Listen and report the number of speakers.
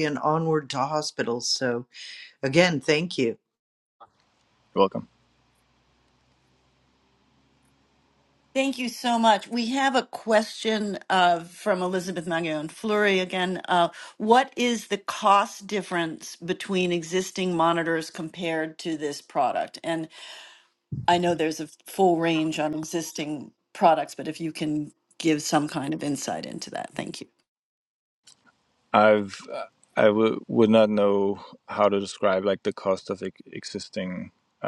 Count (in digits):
3